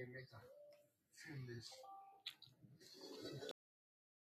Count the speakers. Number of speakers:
0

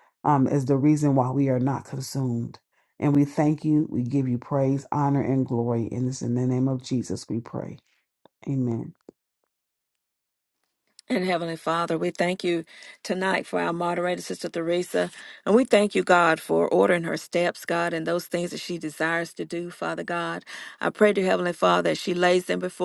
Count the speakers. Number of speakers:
2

